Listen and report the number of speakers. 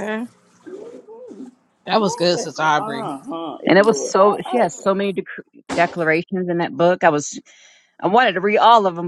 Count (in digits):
3